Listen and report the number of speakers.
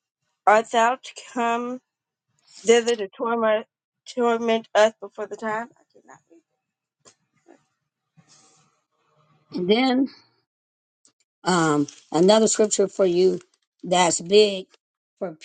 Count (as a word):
two